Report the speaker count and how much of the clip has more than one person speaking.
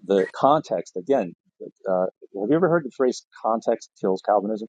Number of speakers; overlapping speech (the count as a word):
one, no overlap